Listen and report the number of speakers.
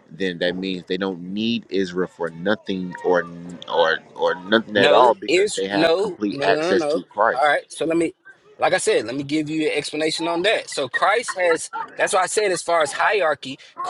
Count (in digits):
2